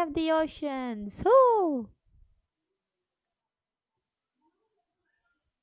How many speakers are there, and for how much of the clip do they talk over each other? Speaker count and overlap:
1, no overlap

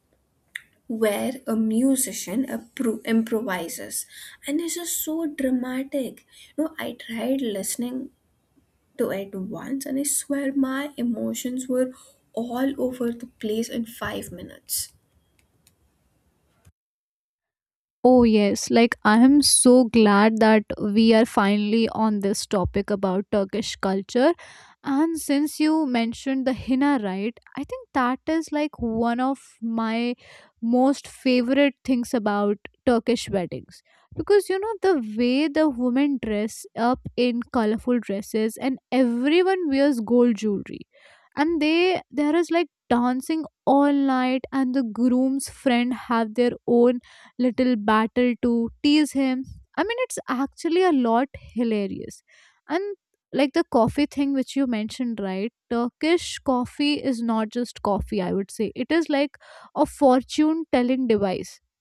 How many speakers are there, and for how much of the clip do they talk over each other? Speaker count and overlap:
2, no overlap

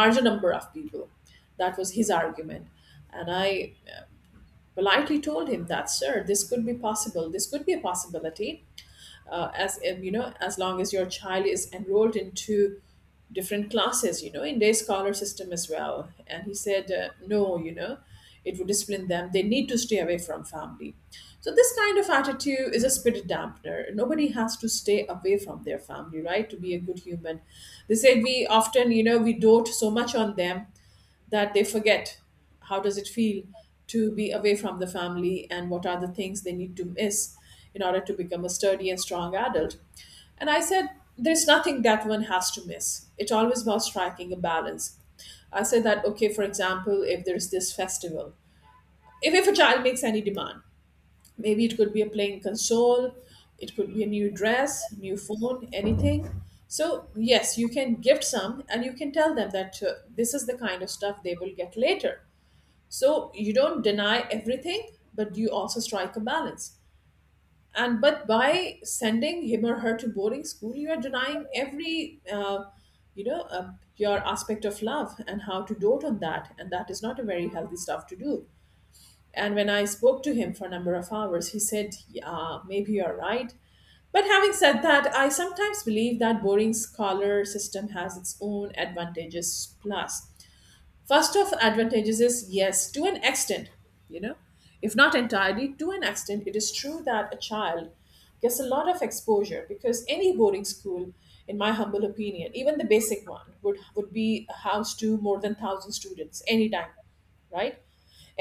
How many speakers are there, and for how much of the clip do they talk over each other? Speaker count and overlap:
1, no overlap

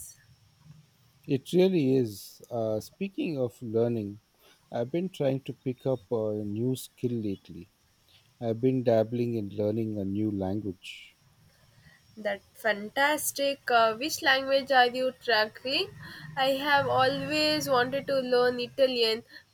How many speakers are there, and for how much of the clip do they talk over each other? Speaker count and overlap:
2, no overlap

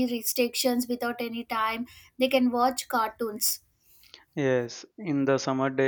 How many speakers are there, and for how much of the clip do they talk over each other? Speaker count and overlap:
2, no overlap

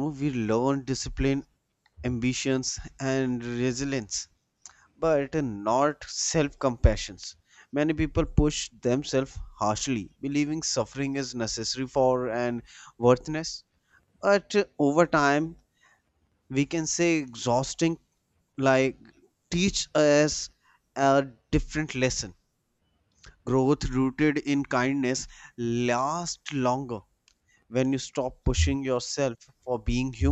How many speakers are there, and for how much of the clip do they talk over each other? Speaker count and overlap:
1, no overlap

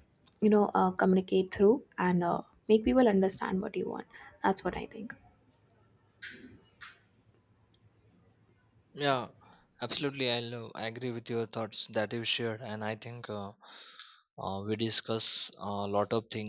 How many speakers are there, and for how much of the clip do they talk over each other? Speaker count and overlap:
2, no overlap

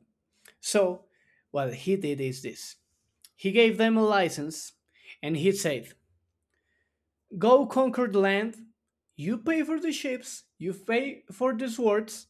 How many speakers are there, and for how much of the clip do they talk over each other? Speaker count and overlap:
1, no overlap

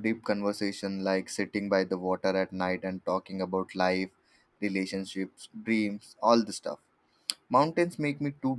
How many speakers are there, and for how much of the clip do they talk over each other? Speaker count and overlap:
1, no overlap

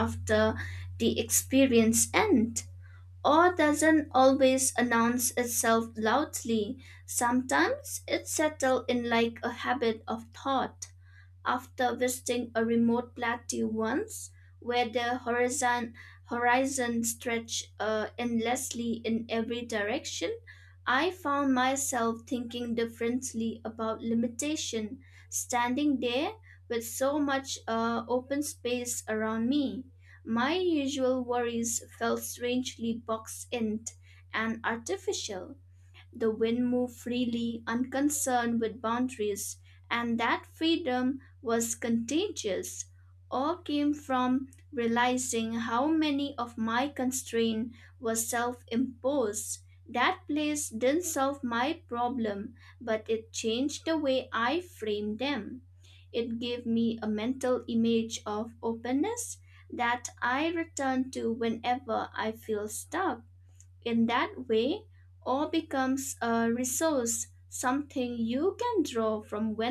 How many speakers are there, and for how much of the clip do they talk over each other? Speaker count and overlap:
1, no overlap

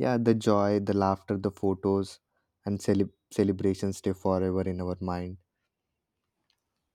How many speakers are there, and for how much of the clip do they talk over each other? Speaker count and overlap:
1, no overlap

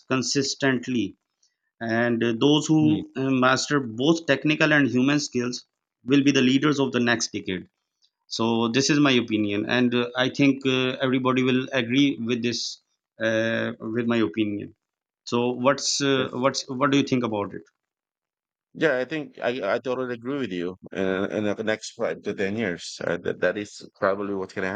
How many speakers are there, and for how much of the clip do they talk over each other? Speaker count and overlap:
2, about 1%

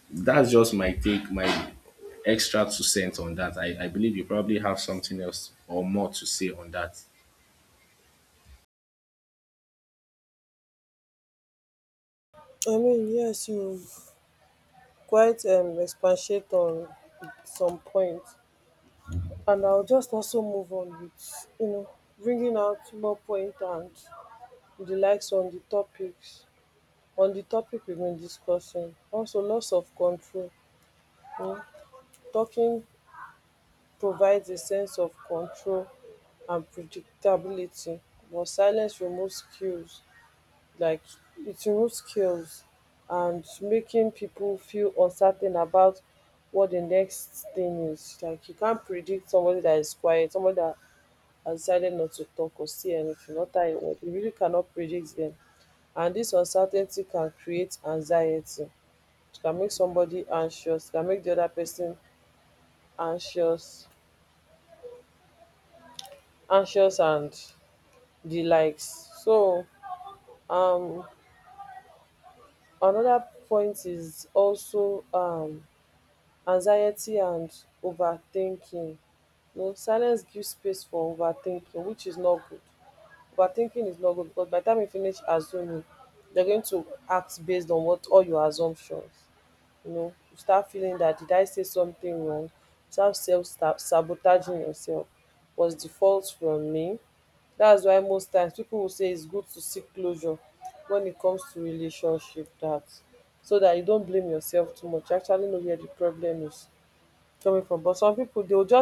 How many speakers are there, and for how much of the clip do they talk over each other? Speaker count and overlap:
2, no overlap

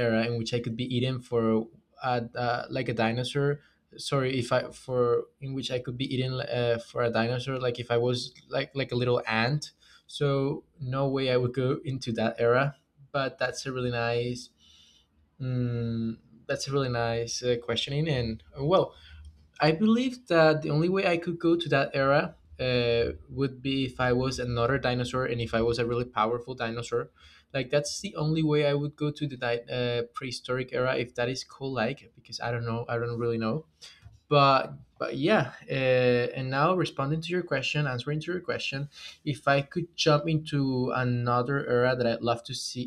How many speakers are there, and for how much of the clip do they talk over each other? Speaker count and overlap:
1, no overlap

